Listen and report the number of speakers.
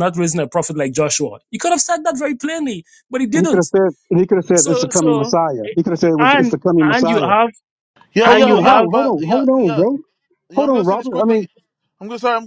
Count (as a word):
three